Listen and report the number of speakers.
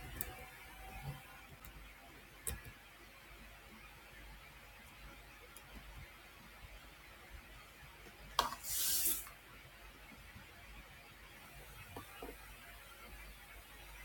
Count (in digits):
0